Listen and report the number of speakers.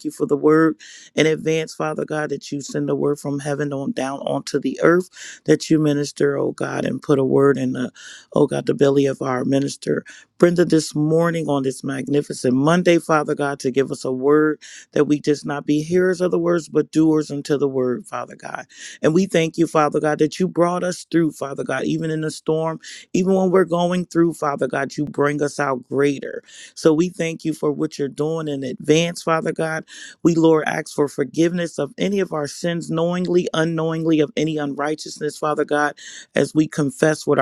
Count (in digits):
1